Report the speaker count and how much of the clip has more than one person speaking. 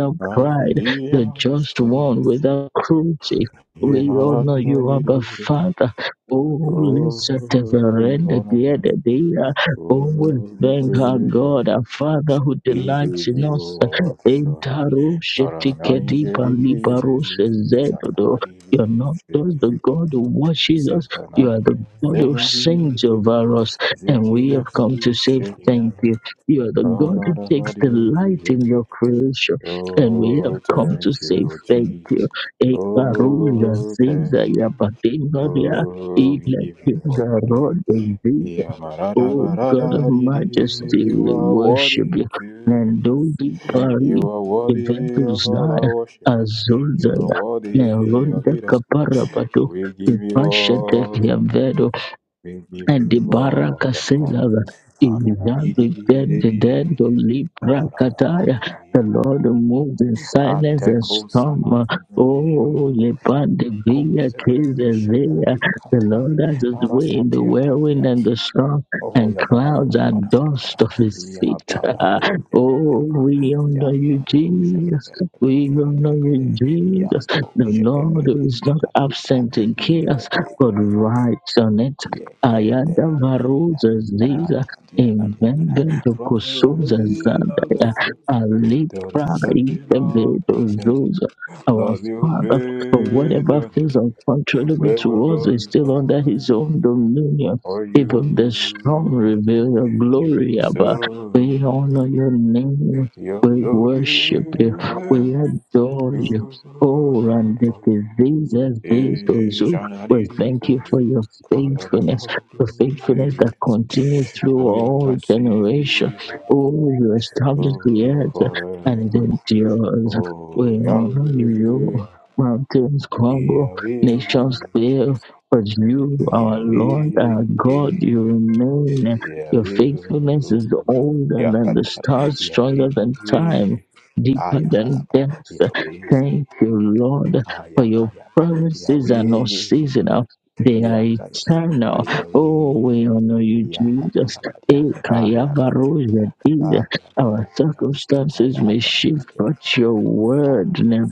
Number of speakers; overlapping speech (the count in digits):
2, about 57%